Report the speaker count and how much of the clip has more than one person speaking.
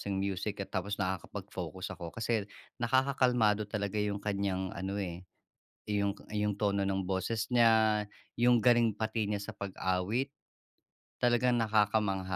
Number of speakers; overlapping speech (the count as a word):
one, no overlap